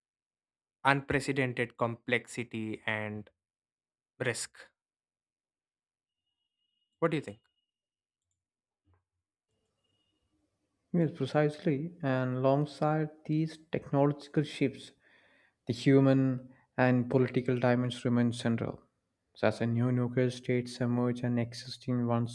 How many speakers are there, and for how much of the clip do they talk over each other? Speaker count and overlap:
2, no overlap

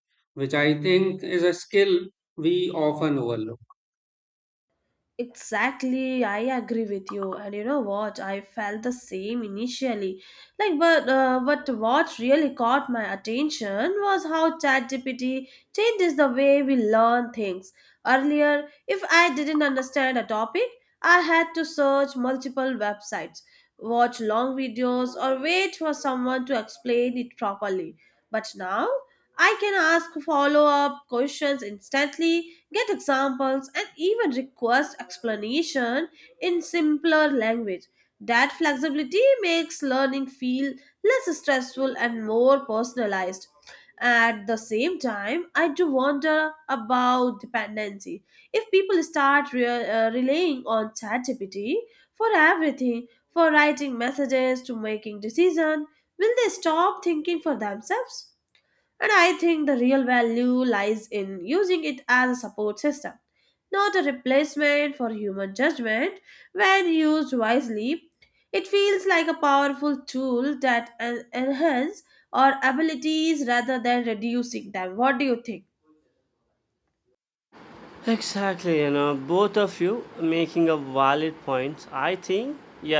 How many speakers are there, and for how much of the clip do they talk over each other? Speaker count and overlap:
3, no overlap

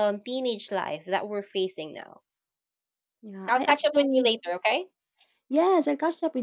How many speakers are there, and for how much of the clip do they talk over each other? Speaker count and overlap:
2, about 13%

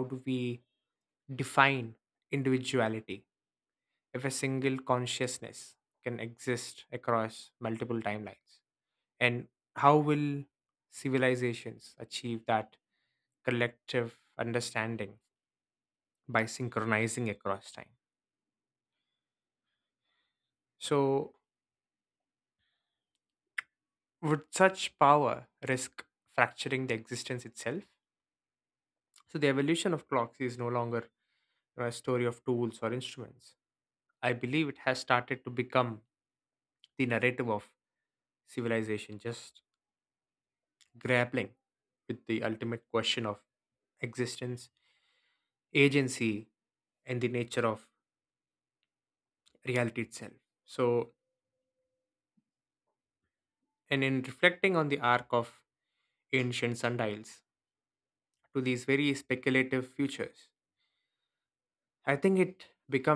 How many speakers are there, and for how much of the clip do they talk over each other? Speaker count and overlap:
1, no overlap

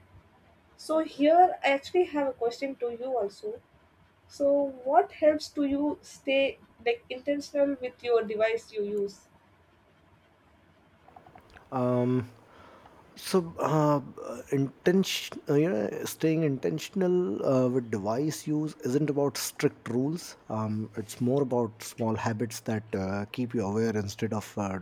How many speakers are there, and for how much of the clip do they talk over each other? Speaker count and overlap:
2, no overlap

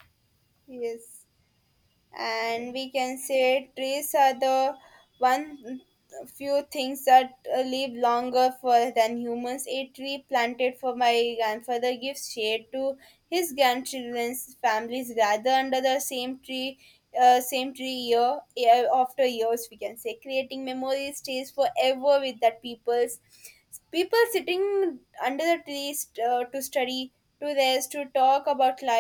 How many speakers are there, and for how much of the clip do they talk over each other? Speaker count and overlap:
1, no overlap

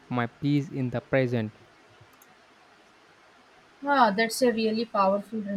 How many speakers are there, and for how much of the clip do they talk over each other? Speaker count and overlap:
2, no overlap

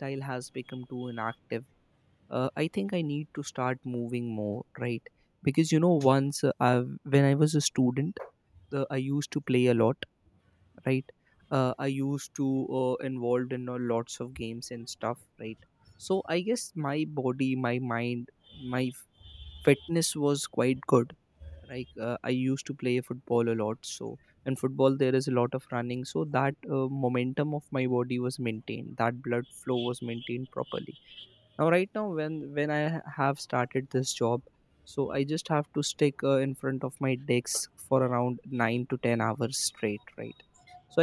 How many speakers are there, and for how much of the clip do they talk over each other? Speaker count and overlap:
1, no overlap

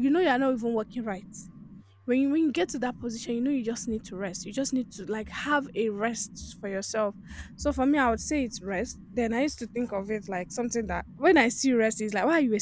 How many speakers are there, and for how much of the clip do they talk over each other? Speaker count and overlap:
1, no overlap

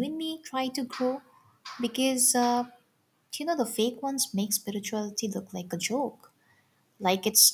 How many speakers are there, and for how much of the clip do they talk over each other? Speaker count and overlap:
1, no overlap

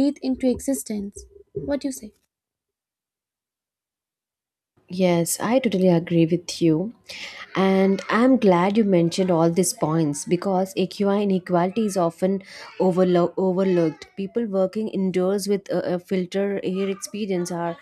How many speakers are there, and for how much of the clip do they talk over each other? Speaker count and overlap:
2, no overlap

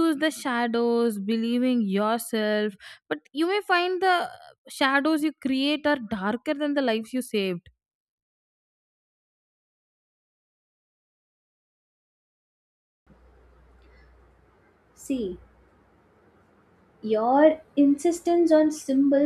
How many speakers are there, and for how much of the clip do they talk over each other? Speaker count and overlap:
2, no overlap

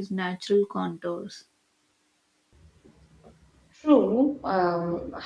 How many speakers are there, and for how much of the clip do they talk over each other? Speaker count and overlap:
2, no overlap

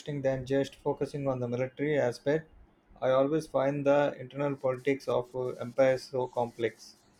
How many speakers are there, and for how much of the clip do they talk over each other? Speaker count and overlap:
1, no overlap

